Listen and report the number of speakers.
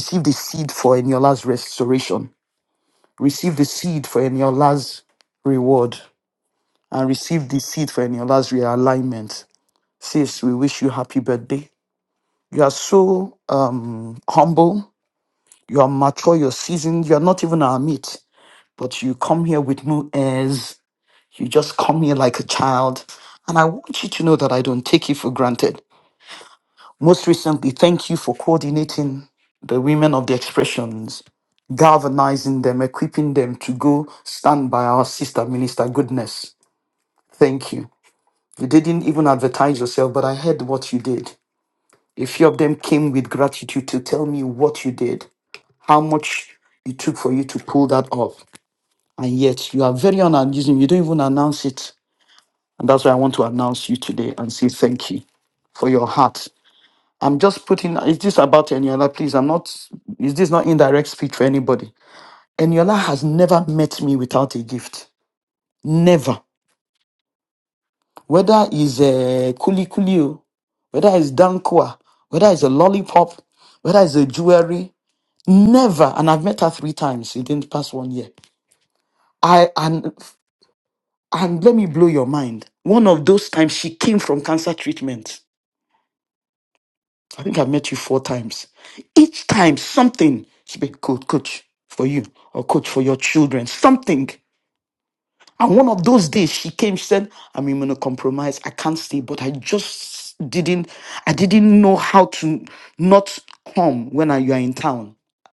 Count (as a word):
one